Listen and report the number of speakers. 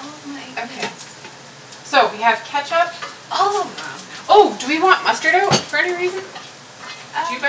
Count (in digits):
2